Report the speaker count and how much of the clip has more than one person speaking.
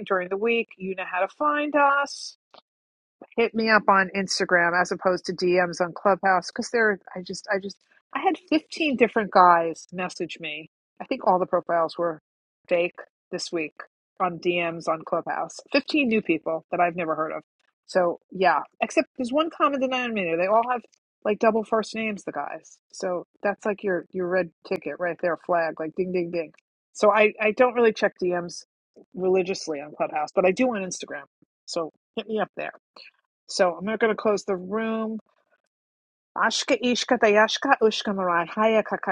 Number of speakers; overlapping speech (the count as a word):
one, no overlap